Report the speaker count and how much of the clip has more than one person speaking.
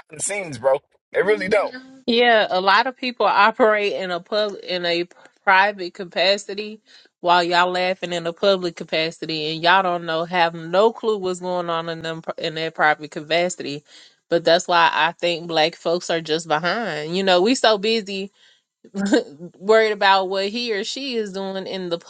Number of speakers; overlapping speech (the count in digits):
2, no overlap